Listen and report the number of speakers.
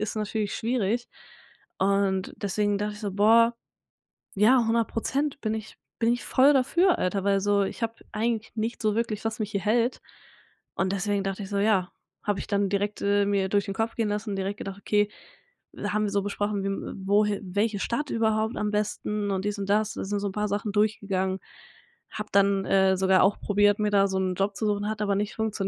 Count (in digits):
1